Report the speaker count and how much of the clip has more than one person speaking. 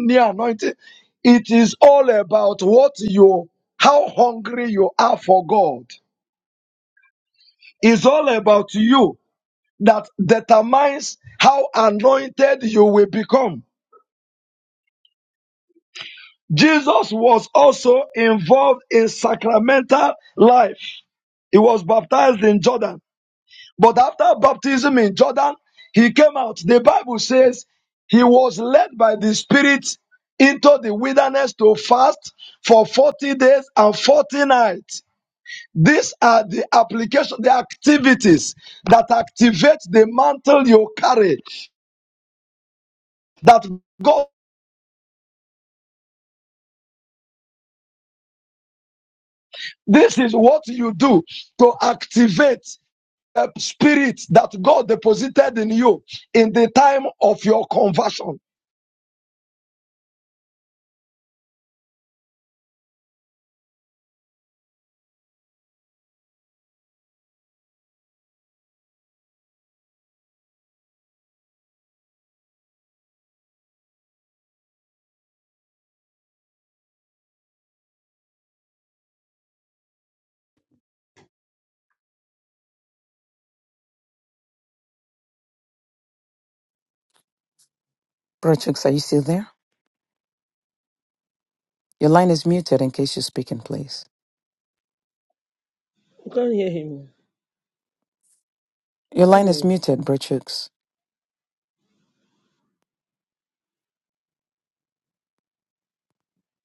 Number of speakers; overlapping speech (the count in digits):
3, under 1%